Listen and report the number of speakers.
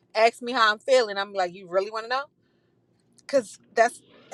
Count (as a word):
one